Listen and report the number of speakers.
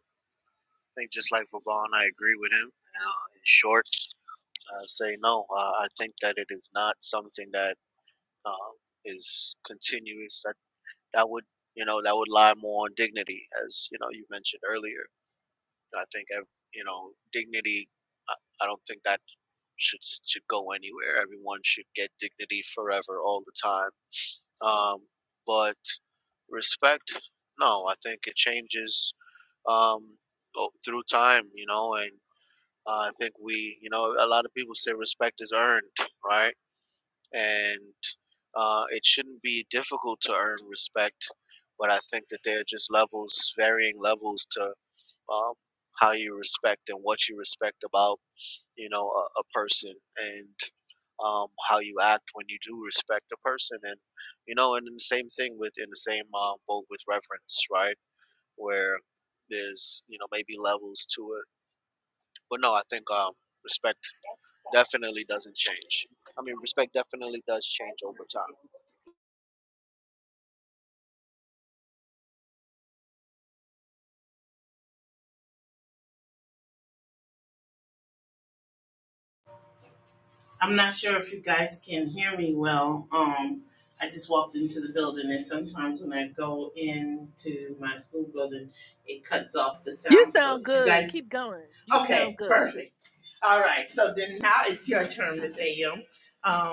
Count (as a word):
three